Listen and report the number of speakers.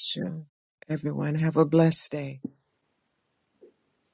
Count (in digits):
1